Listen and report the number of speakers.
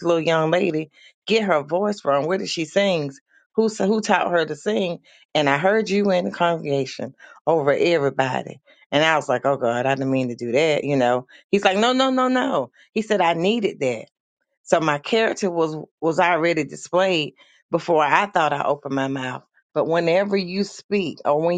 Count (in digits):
1